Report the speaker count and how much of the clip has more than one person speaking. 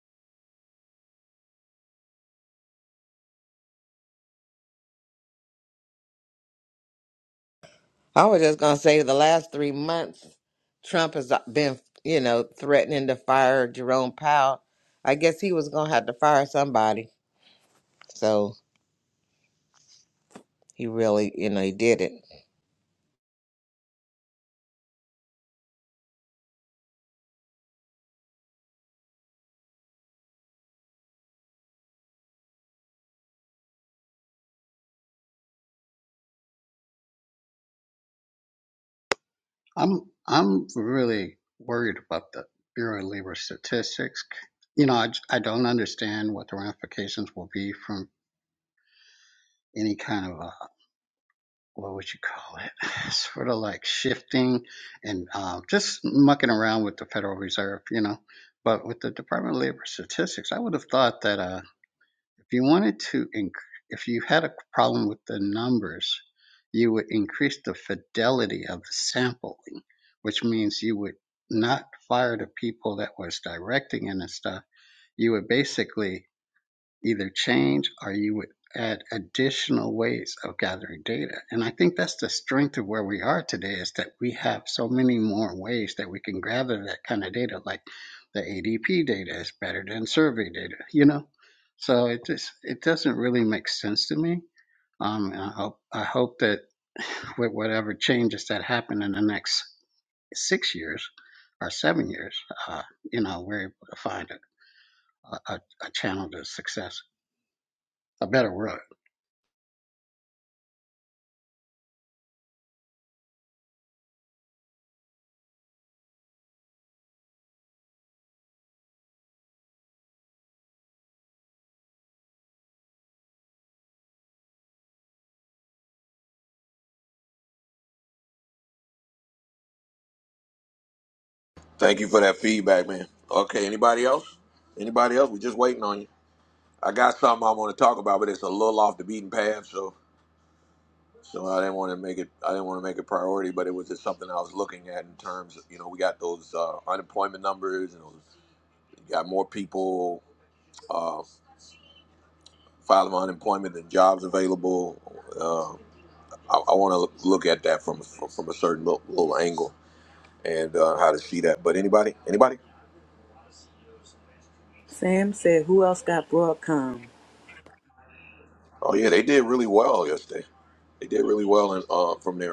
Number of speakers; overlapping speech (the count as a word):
four, no overlap